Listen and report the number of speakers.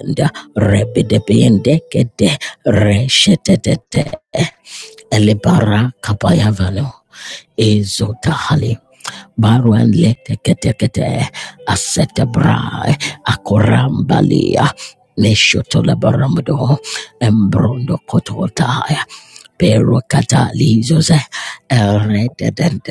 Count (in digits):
1